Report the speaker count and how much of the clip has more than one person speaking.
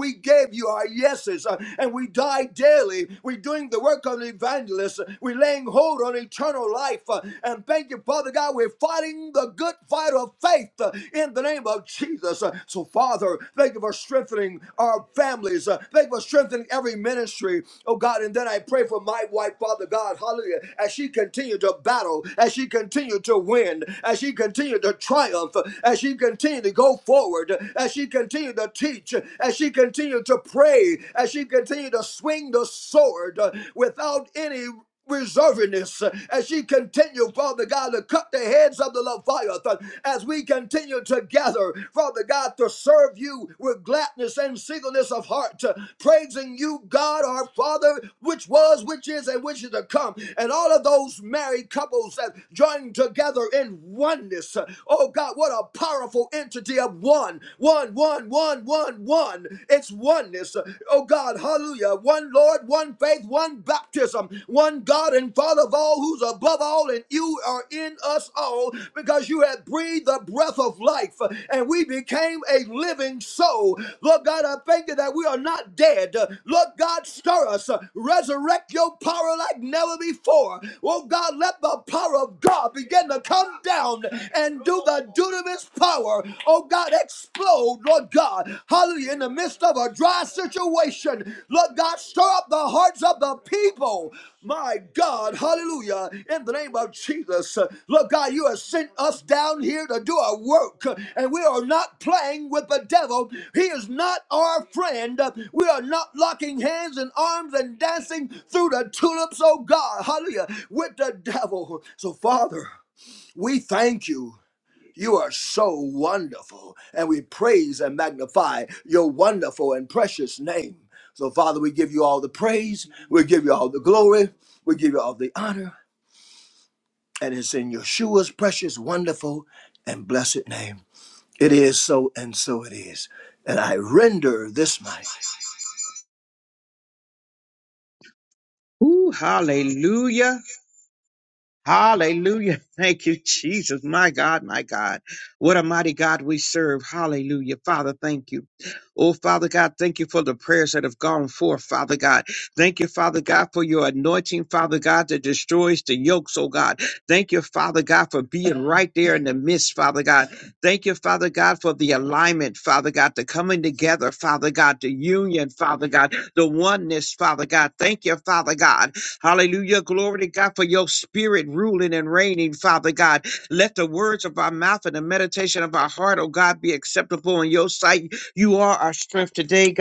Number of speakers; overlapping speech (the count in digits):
2, no overlap